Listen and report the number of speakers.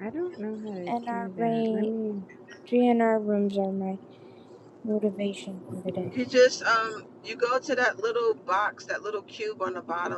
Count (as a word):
three